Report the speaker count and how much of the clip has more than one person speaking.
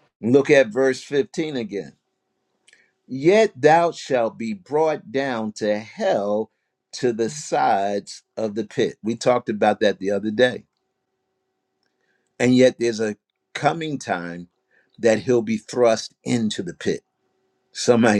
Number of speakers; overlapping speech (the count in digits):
1, no overlap